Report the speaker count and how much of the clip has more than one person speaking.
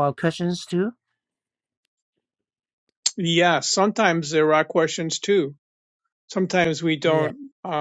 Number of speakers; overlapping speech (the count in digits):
2, about 3%